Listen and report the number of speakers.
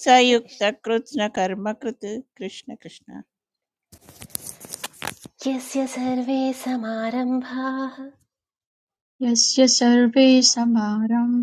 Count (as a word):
three